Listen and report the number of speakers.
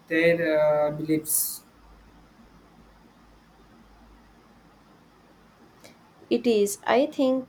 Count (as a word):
two